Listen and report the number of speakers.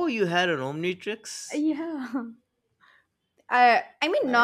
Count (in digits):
2